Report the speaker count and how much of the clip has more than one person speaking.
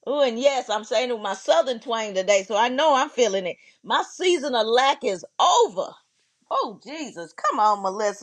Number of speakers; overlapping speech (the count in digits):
1, no overlap